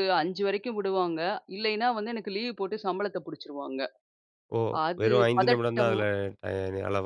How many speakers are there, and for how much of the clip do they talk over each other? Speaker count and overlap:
two, about 15%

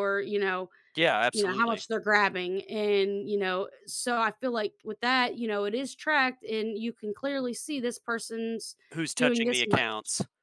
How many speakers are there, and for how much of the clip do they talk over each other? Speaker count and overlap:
two, about 11%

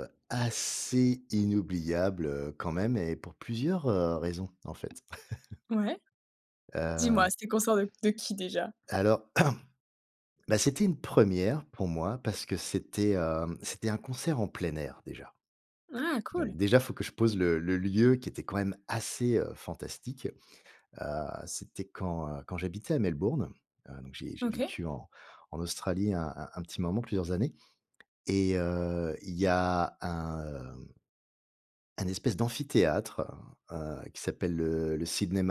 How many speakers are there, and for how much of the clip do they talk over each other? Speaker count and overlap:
two, about 2%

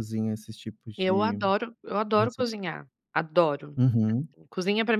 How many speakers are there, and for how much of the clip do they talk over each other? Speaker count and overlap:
two, about 15%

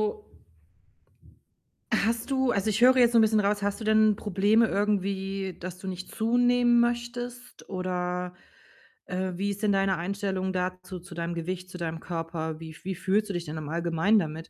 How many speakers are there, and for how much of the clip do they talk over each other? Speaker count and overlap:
one, no overlap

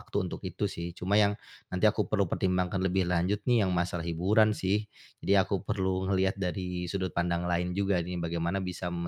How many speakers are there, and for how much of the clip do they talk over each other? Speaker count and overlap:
one, no overlap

